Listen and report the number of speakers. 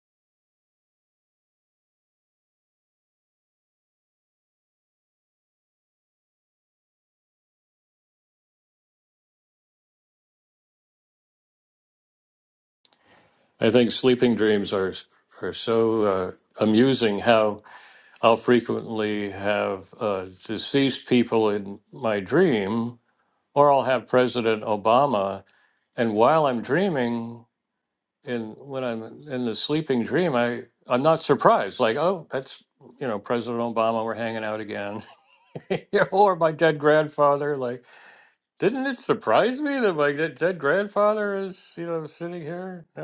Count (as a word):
one